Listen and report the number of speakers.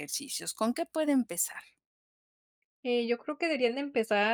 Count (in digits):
2